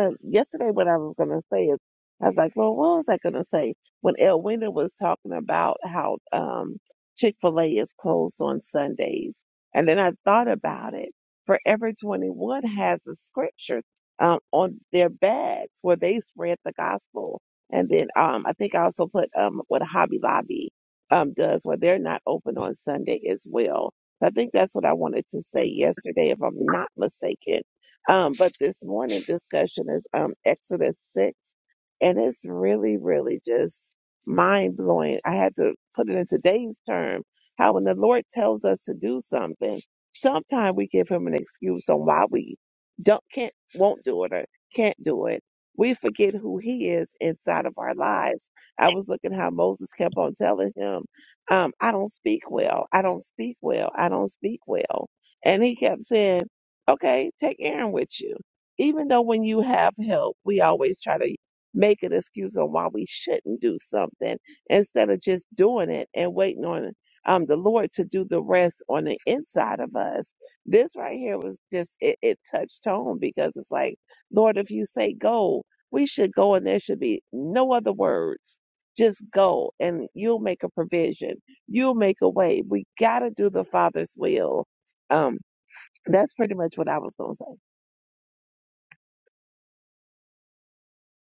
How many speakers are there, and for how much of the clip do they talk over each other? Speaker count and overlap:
1, no overlap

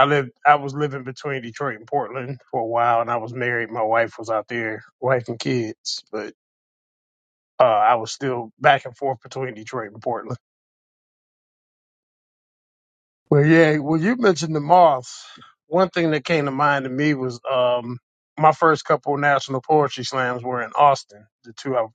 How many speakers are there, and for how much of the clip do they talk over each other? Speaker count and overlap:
1, no overlap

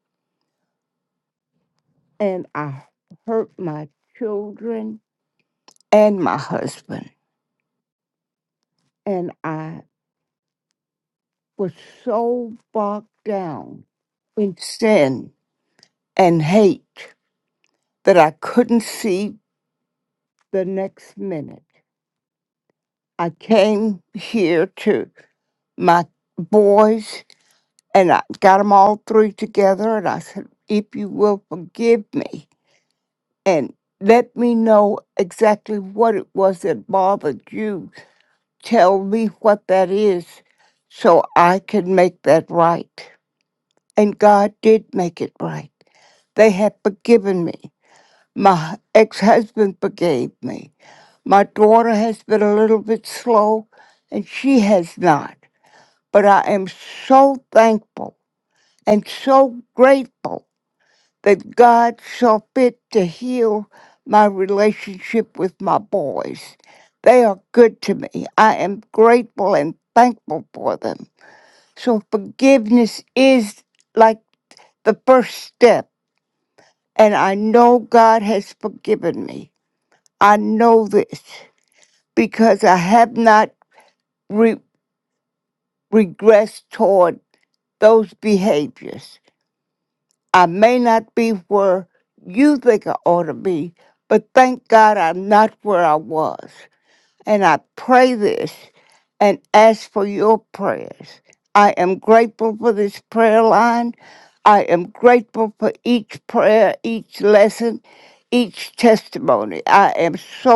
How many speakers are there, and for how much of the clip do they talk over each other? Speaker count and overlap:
1, no overlap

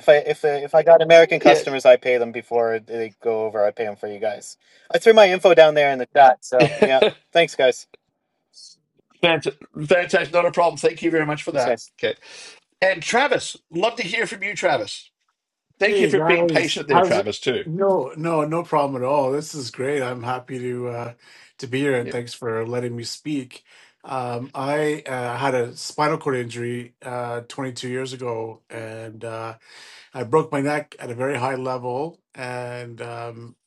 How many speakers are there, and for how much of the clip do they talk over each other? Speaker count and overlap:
3, about 6%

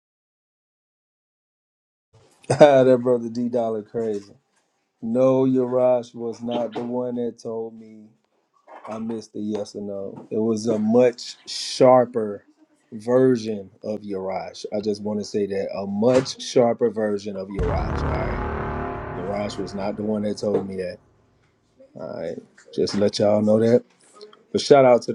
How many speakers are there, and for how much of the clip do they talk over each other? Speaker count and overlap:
1, no overlap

